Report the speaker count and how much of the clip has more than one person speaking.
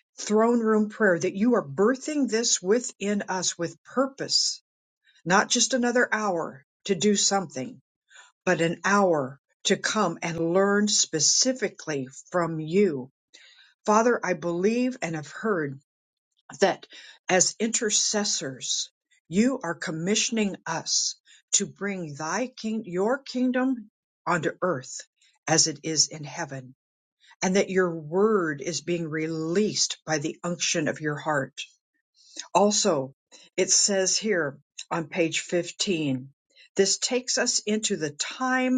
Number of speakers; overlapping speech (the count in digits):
1, no overlap